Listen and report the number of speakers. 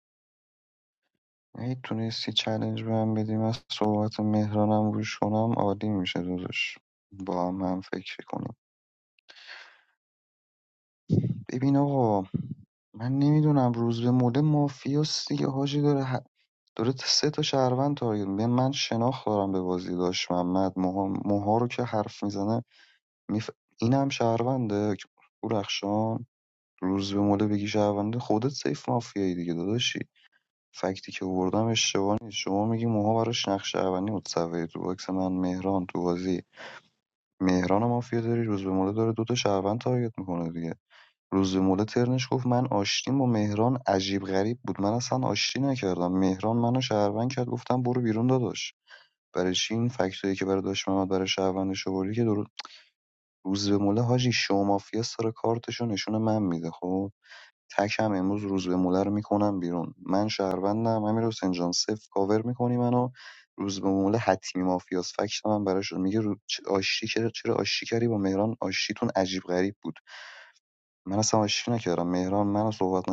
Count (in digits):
1